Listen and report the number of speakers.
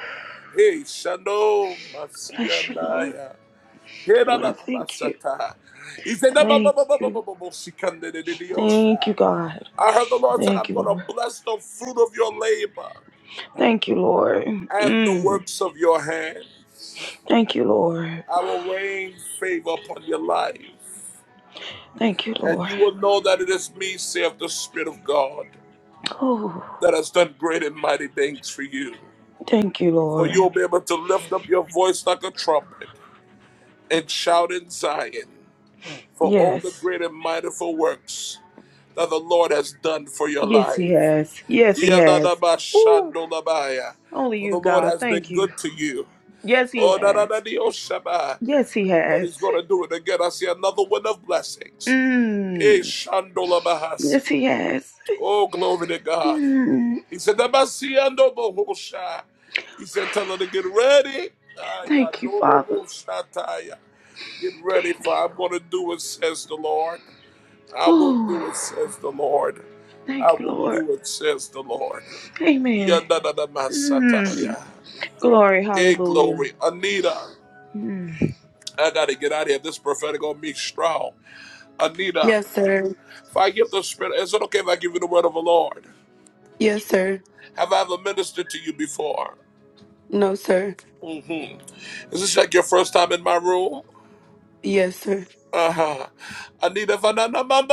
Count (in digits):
3